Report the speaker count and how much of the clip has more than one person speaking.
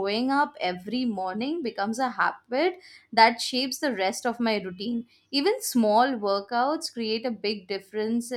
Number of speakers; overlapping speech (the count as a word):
one, no overlap